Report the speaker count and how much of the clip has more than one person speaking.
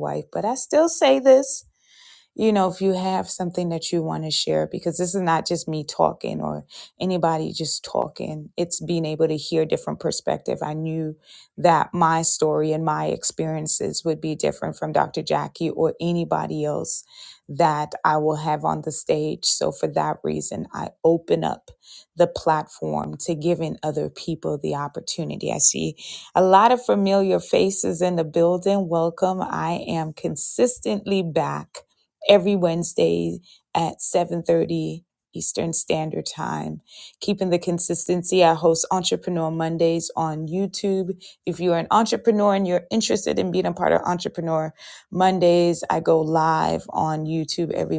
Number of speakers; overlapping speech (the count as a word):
one, no overlap